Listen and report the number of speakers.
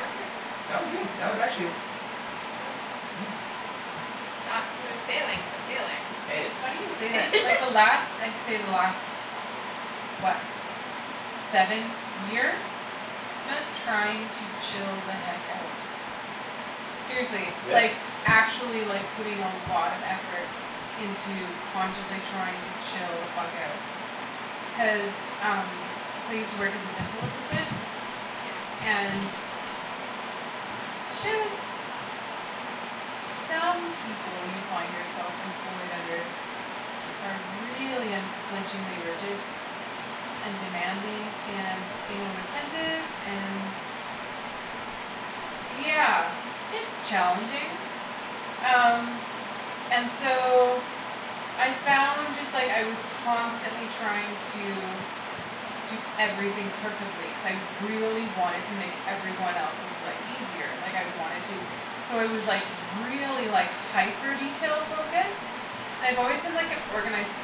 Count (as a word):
three